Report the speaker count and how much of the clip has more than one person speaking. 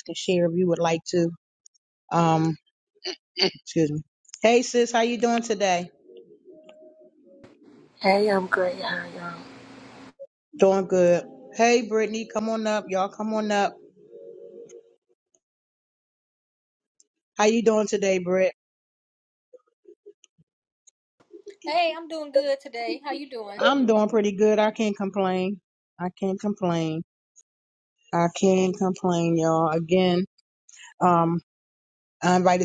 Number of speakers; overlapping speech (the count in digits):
3, under 1%